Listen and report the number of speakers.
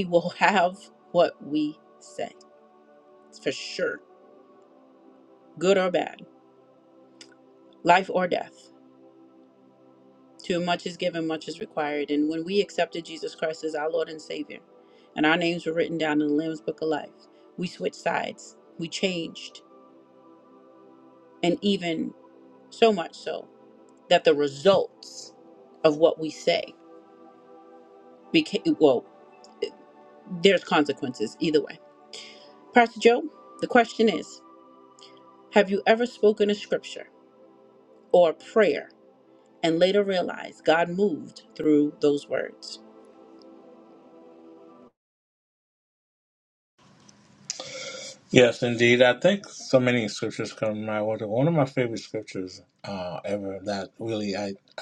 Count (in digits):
2